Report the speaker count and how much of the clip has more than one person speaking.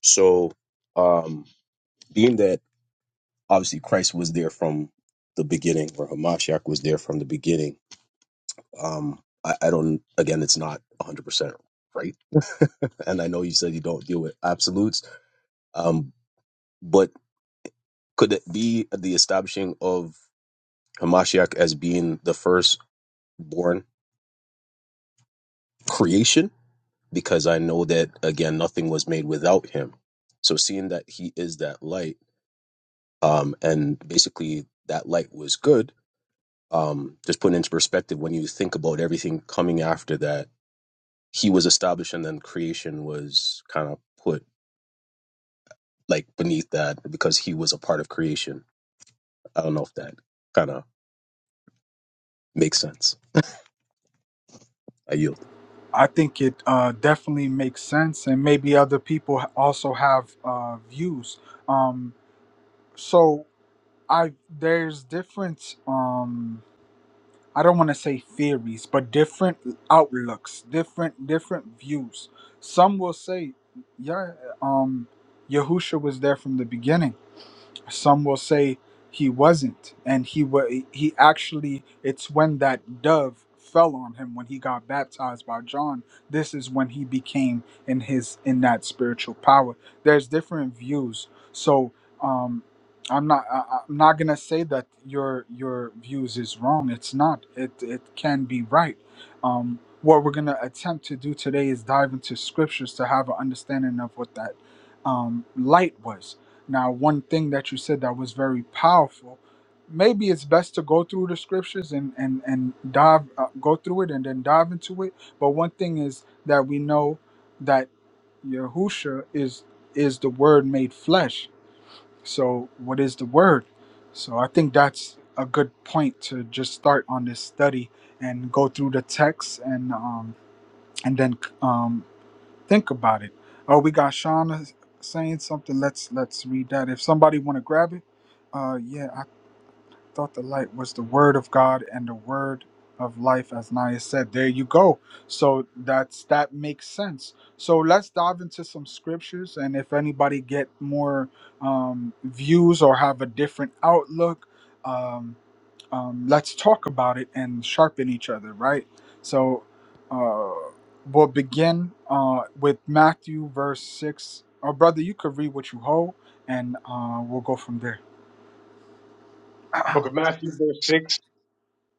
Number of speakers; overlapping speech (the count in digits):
3, no overlap